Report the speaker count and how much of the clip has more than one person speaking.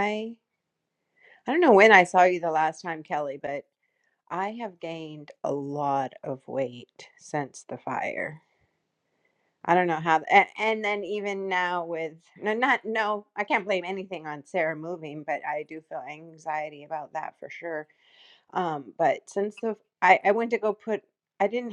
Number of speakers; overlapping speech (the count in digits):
1, no overlap